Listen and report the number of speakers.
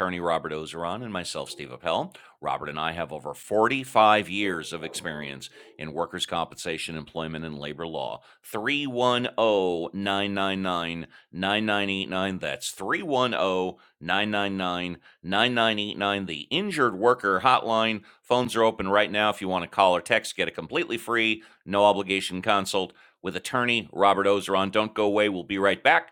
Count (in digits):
1